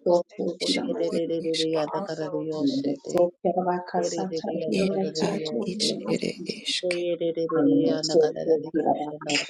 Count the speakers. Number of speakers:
3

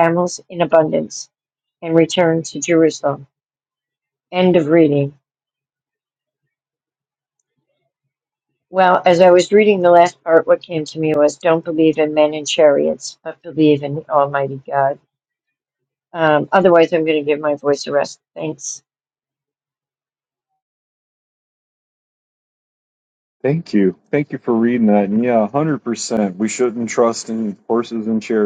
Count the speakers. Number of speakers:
2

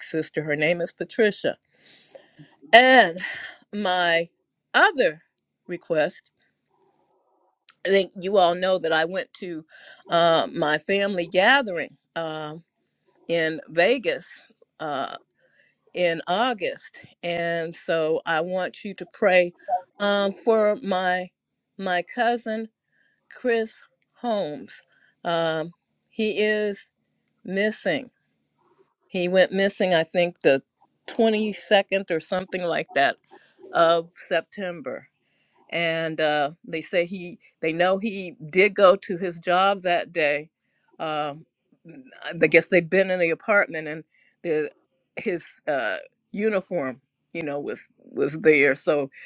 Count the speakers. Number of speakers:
1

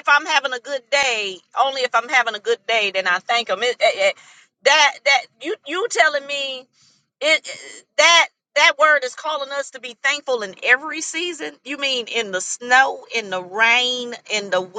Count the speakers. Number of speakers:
1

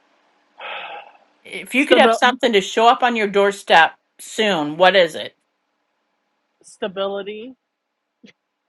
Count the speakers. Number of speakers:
2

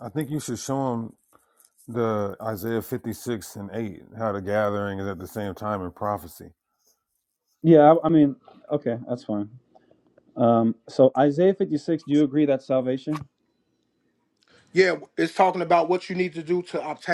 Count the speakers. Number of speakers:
3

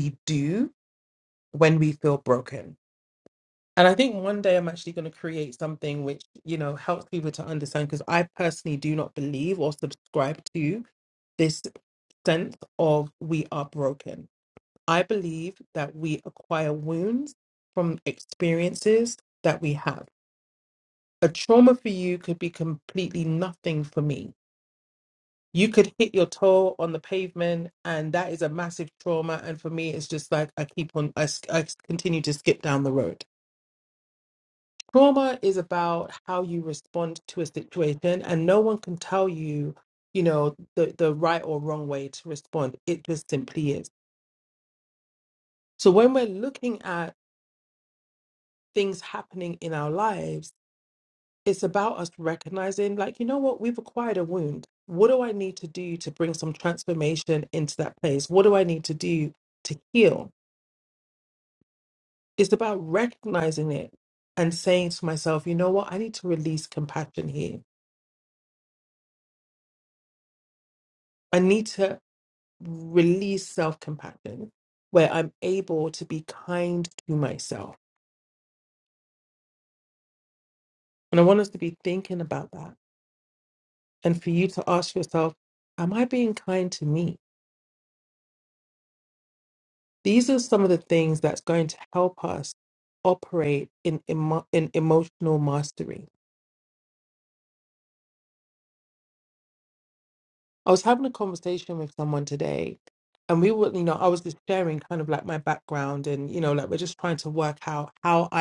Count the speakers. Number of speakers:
1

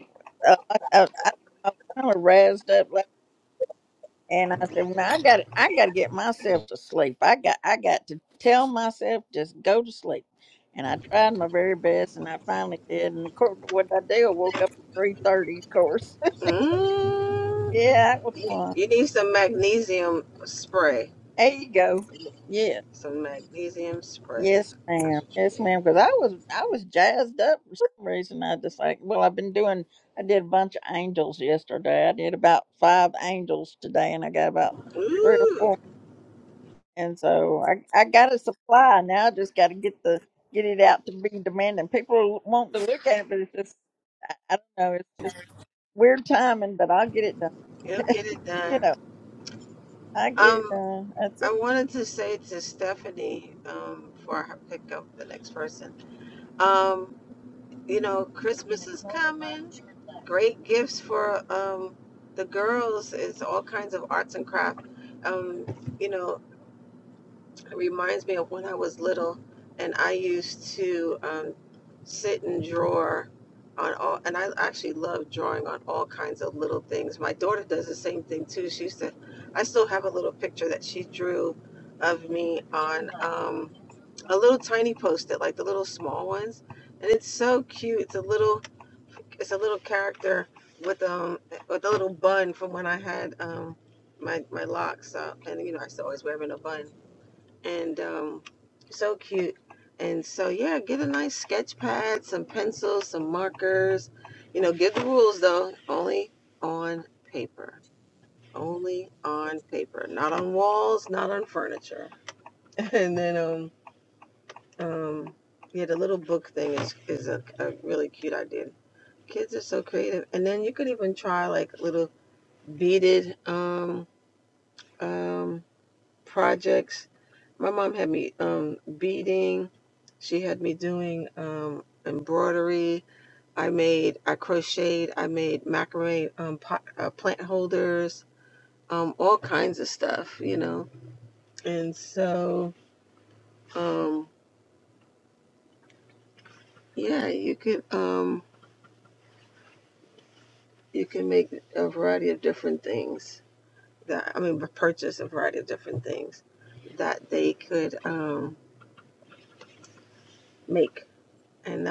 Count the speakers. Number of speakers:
2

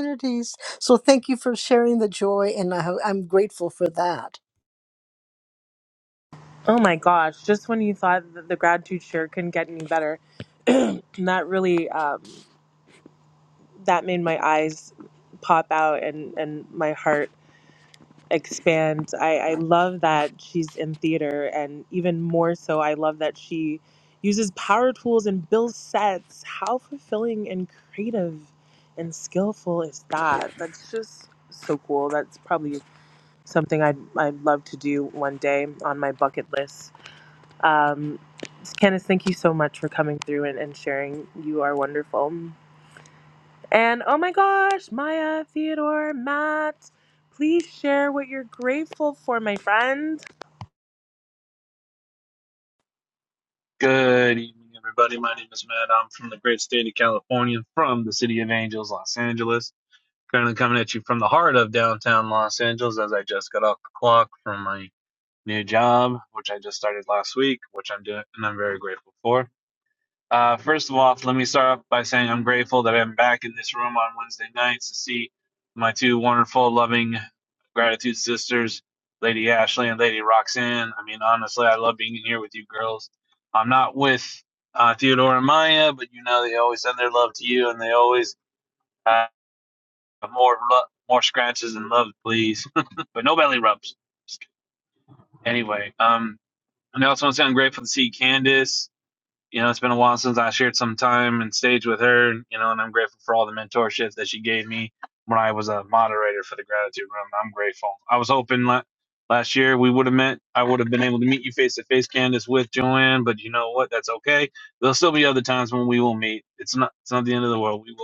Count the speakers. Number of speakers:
3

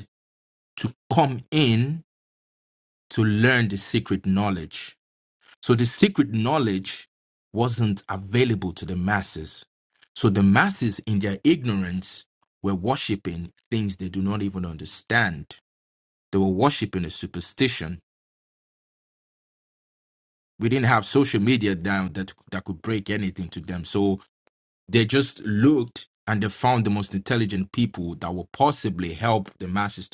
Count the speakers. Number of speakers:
1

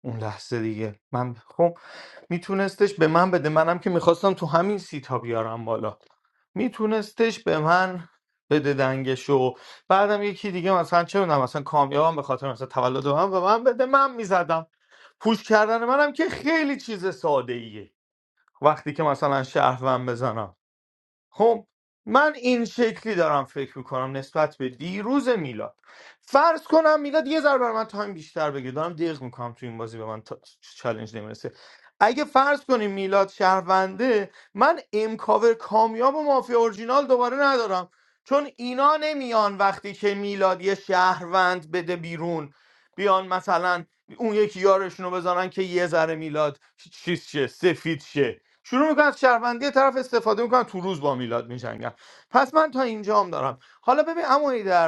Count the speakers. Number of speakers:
1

